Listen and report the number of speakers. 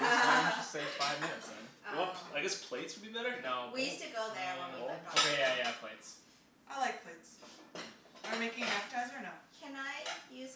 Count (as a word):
four